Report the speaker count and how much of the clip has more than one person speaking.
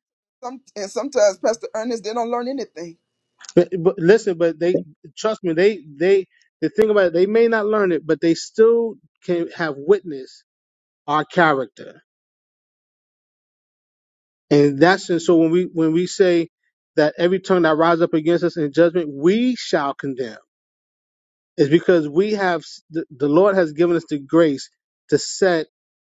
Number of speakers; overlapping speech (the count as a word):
two, no overlap